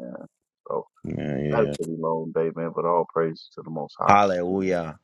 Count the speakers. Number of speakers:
2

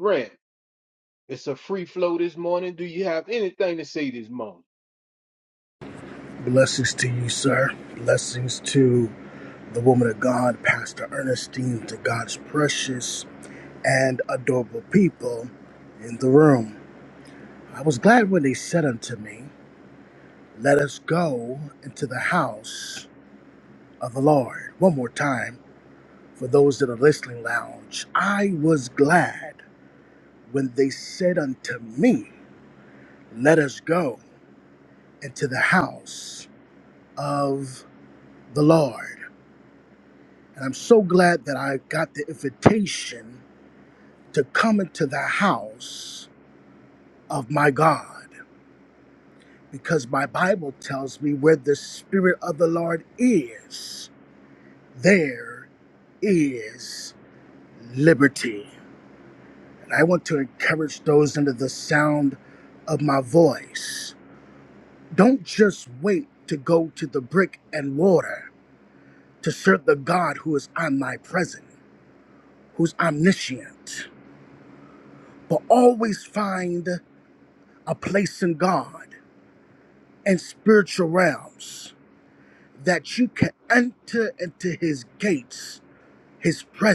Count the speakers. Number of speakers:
2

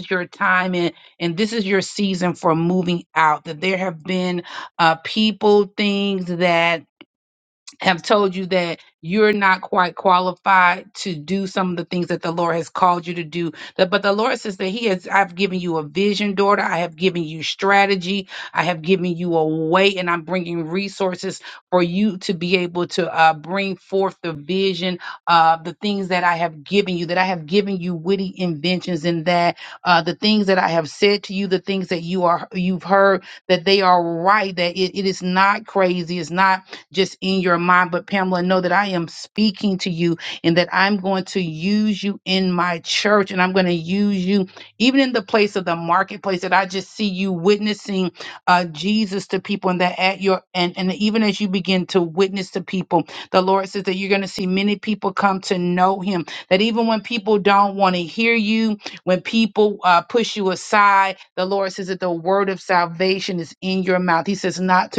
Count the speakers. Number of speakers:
1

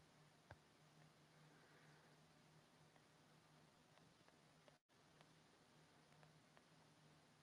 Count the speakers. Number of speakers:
0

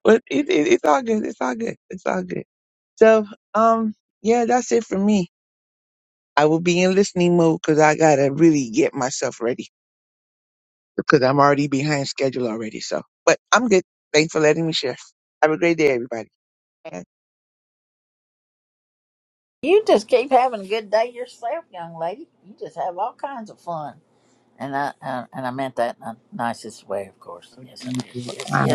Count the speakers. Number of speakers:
2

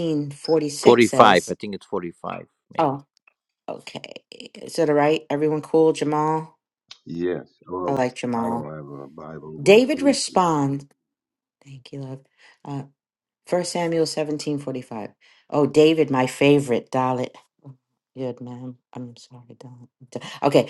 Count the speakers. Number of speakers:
3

